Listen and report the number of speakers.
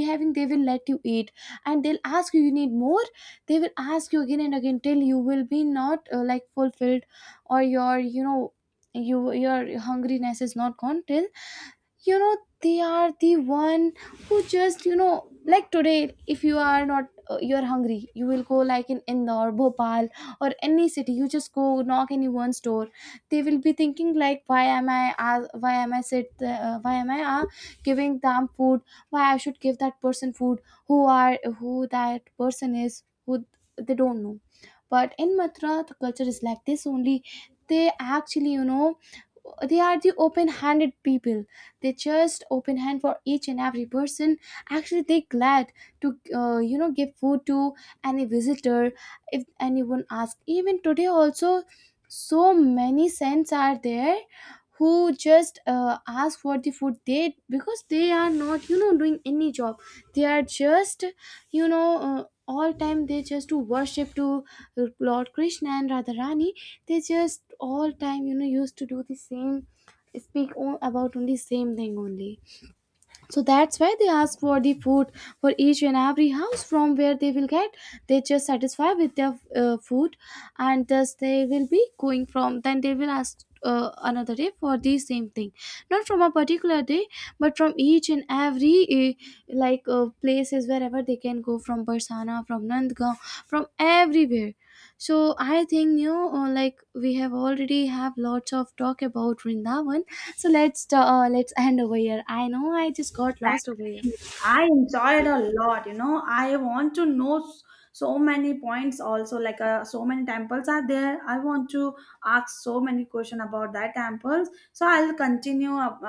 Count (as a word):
two